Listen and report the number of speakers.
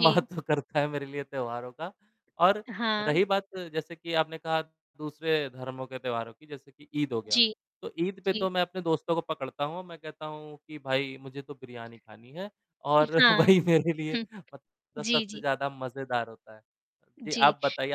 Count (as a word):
two